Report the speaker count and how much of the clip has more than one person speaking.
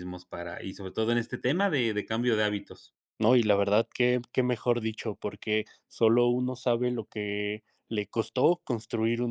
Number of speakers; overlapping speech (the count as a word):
two, no overlap